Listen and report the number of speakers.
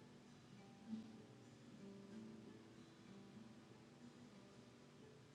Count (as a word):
zero